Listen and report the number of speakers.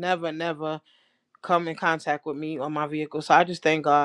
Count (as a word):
one